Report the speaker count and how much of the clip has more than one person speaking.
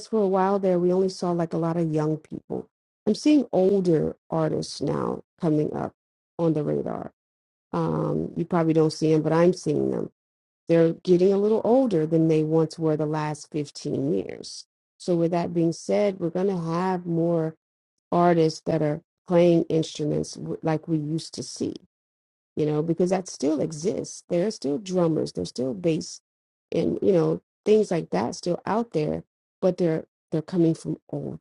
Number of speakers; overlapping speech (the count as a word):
one, no overlap